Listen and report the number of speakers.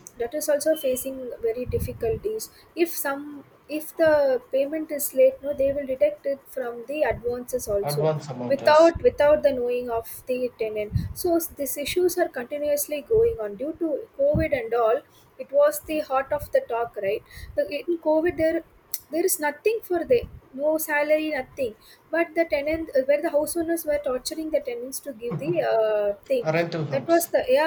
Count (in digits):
2